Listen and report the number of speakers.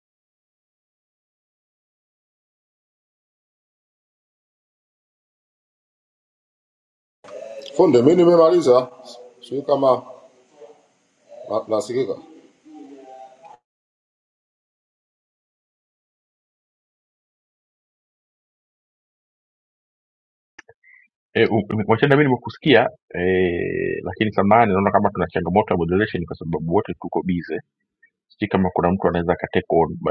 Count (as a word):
two